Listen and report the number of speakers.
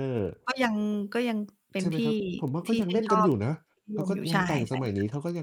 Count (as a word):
two